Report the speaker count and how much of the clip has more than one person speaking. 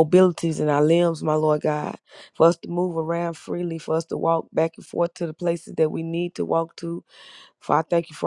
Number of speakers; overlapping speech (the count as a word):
one, no overlap